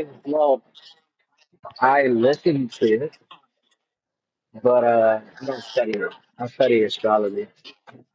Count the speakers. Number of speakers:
one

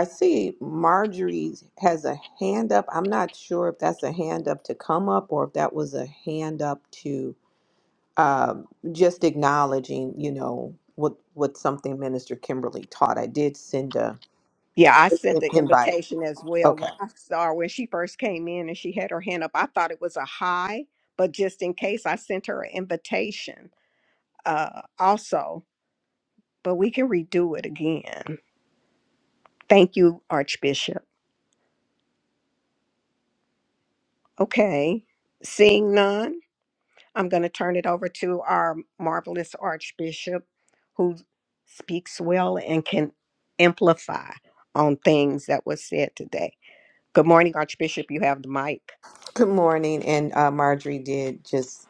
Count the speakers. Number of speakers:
two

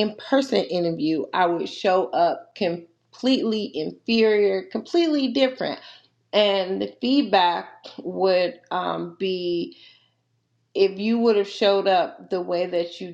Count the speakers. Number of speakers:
one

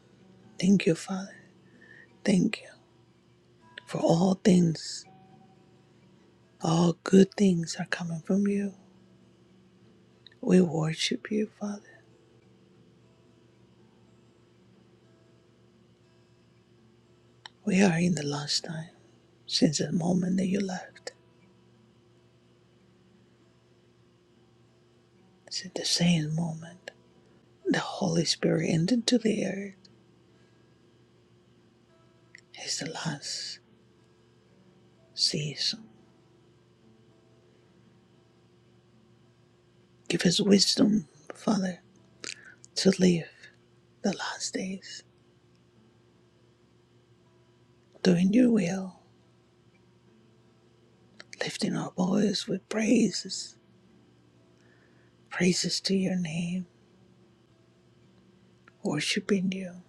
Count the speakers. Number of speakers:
one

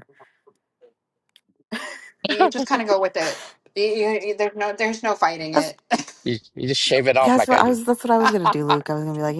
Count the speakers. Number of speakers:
three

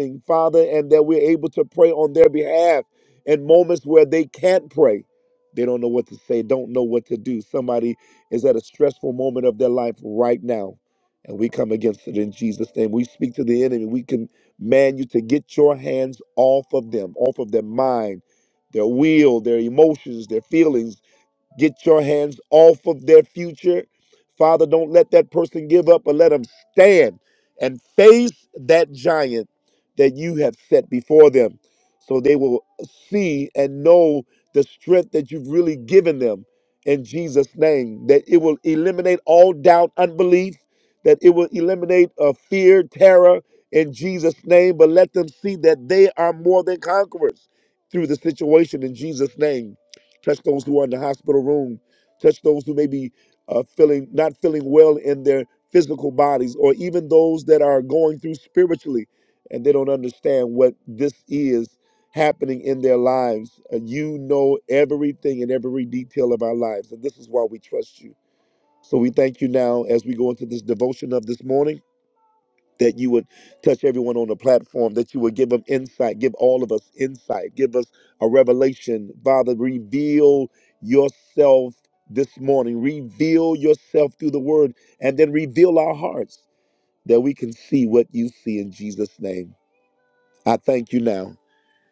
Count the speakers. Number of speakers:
one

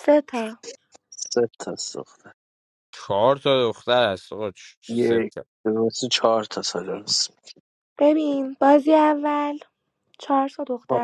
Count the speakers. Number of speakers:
three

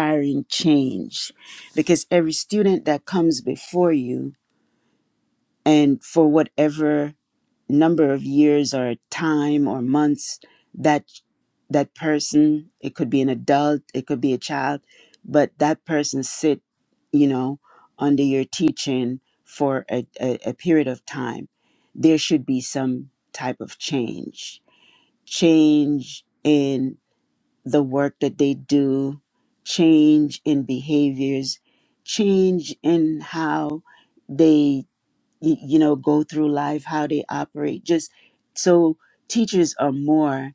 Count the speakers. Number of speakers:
one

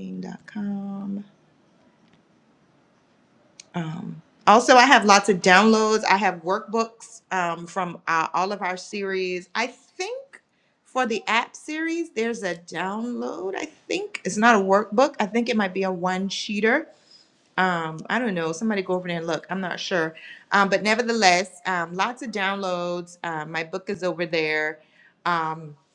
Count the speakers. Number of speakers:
one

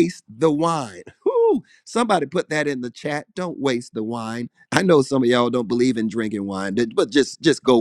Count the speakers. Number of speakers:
one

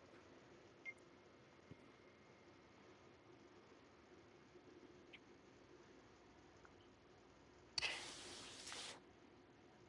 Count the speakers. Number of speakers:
zero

